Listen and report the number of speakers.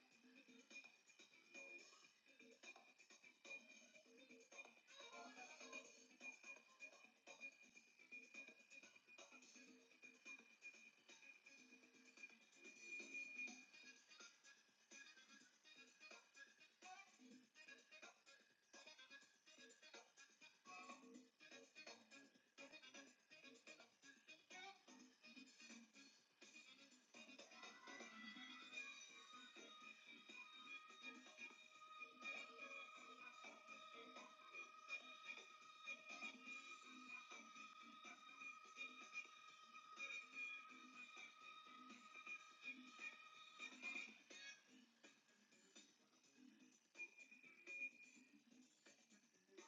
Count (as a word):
zero